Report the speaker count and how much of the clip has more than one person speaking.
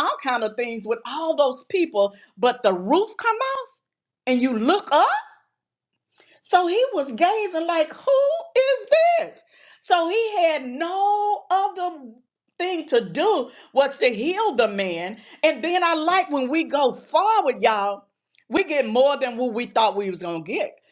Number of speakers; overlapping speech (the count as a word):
one, no overlap